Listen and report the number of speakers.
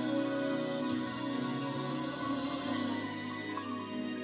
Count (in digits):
0